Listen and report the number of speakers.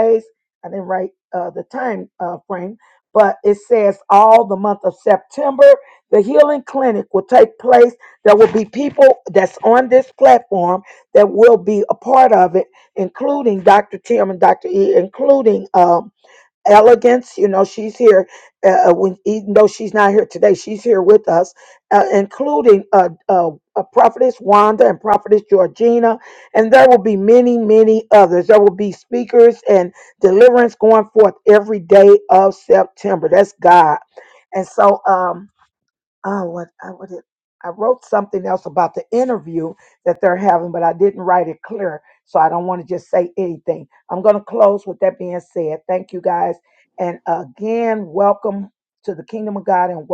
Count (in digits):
1